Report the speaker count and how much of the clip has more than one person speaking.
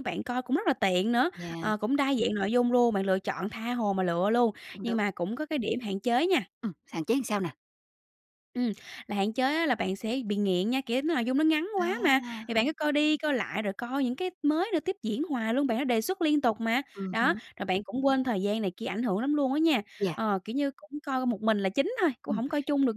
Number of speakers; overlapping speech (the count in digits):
2, about 9%